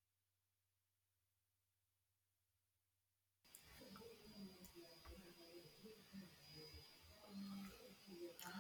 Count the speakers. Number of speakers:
zero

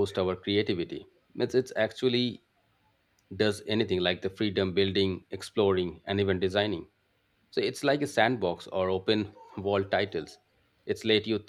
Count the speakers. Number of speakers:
one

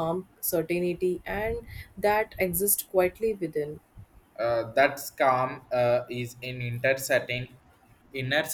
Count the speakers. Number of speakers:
two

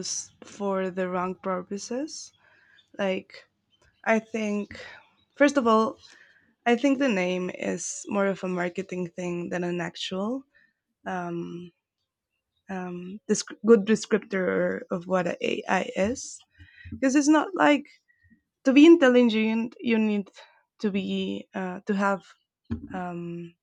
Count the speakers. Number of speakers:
one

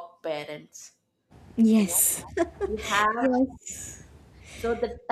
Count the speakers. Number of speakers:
two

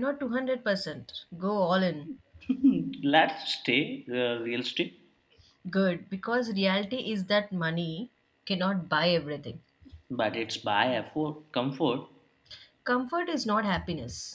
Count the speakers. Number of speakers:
two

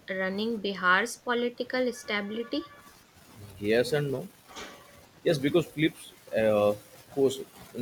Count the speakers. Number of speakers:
two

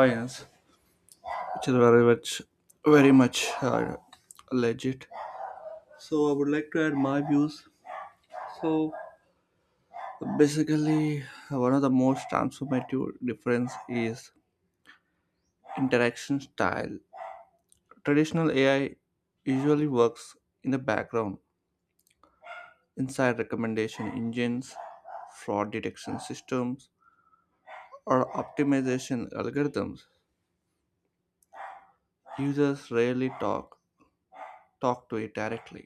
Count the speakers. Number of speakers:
one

